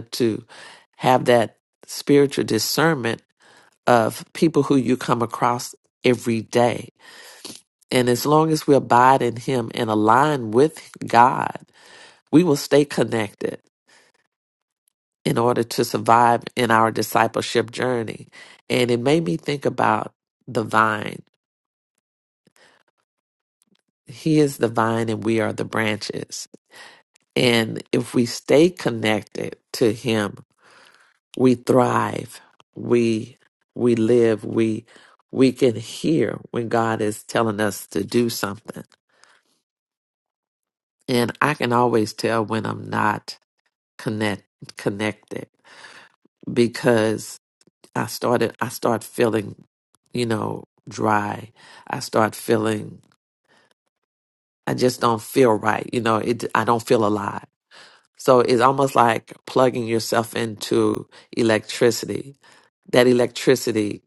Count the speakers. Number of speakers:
1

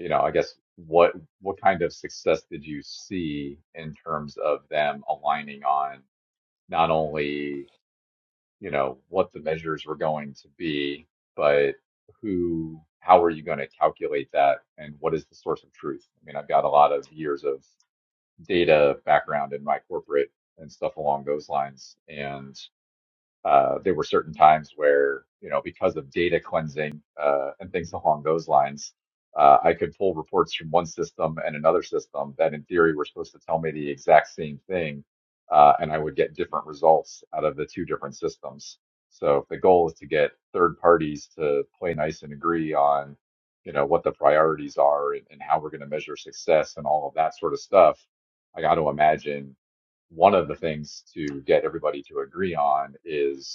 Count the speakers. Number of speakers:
1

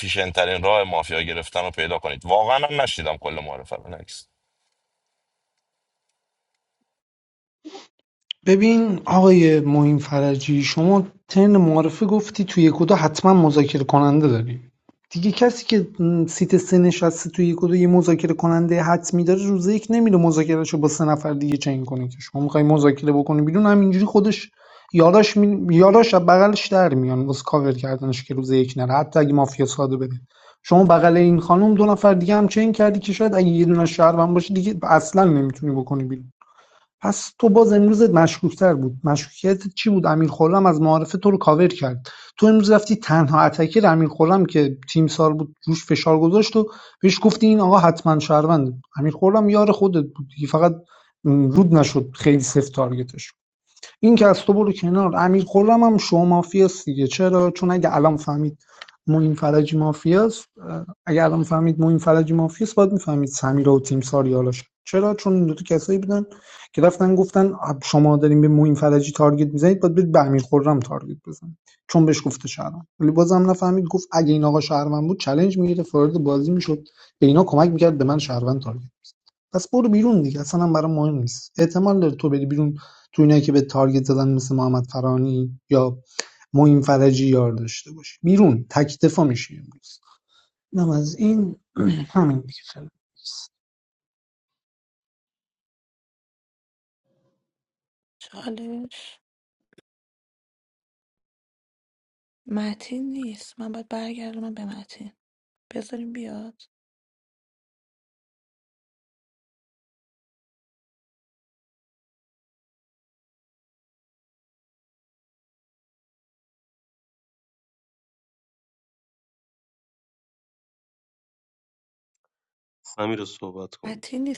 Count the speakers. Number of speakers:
4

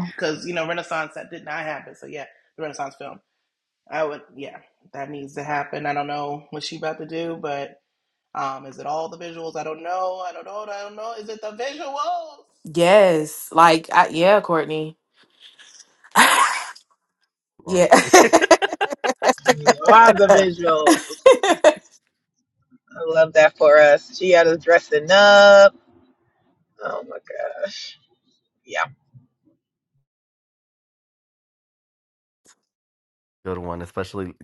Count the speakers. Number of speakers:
4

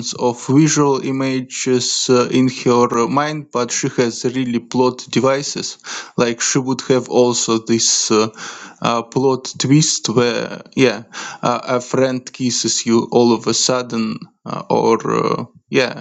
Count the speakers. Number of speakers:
1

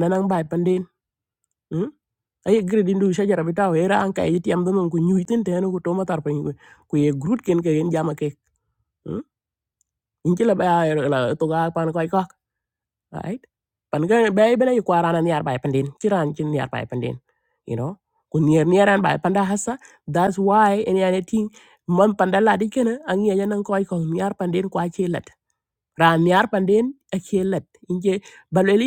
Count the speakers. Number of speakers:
1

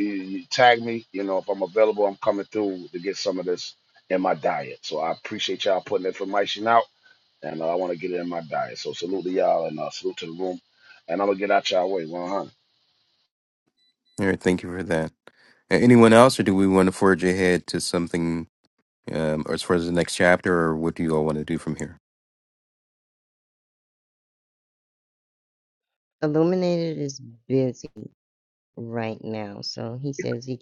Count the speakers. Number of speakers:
3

